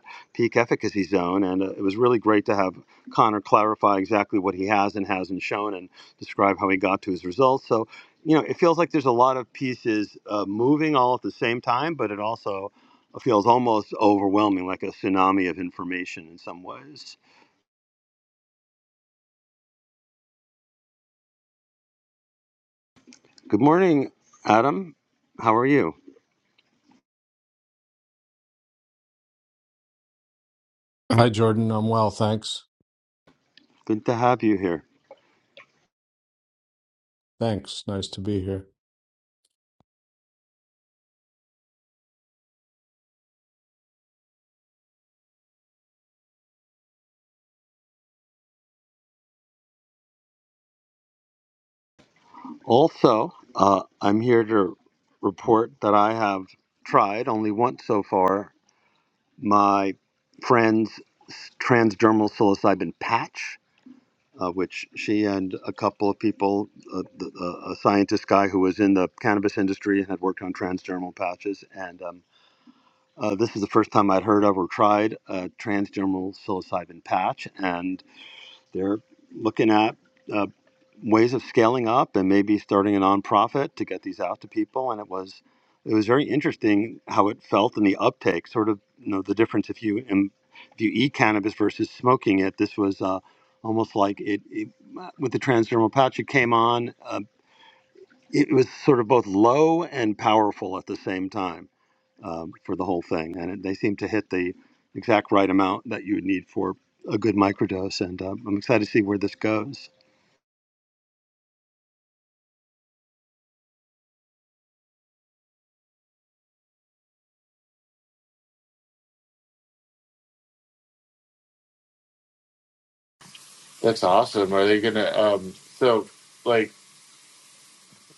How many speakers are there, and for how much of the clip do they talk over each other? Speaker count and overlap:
three, no overlap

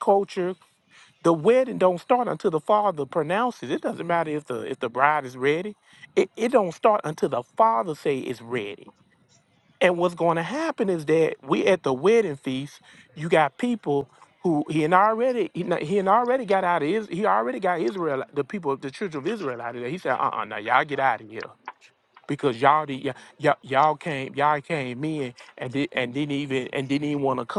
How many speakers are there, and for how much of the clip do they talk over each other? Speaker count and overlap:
one, no overlap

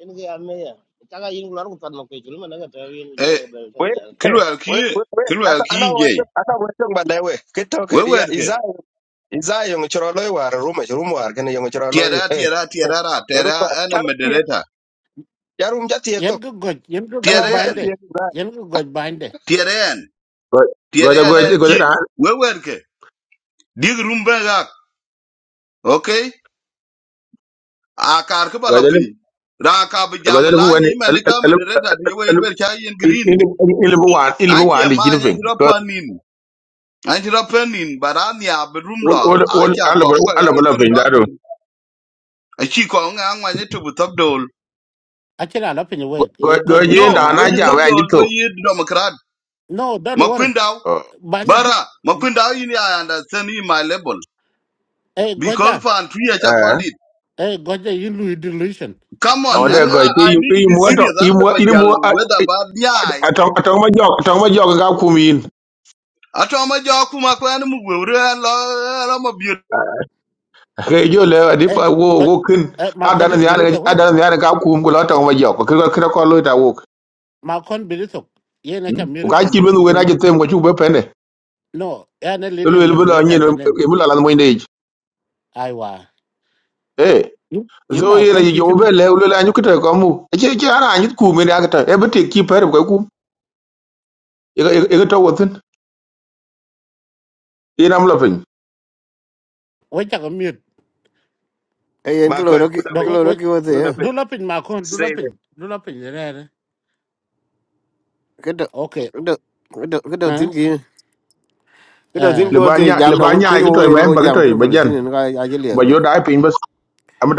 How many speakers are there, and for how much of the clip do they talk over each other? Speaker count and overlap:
six, about 22%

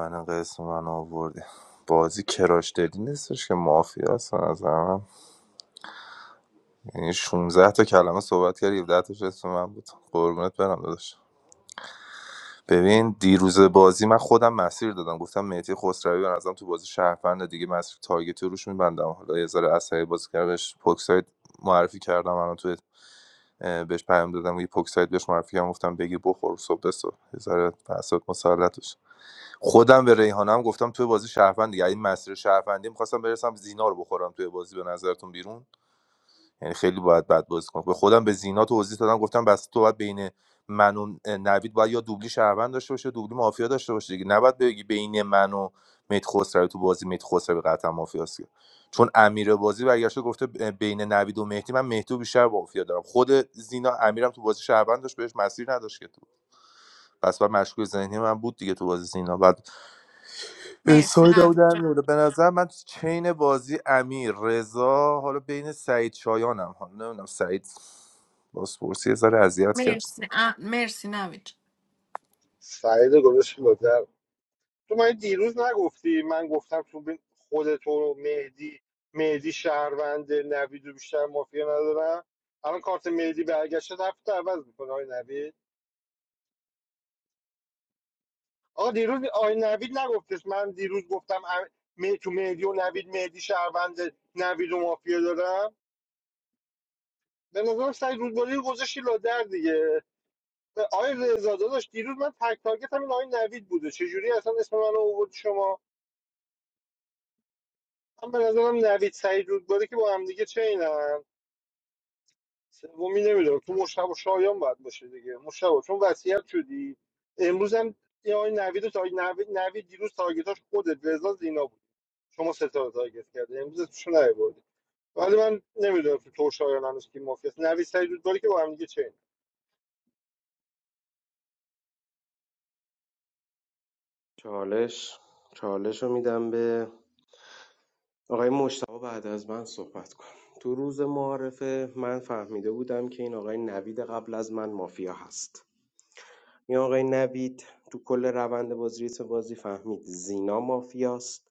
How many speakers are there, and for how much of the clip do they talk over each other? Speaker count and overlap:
four, about 1%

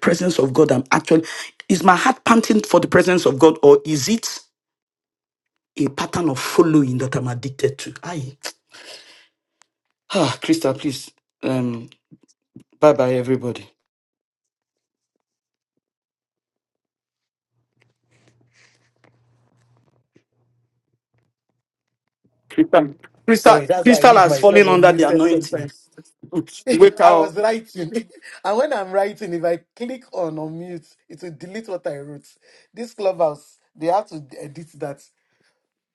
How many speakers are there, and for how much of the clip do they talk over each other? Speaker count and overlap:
two, about 7%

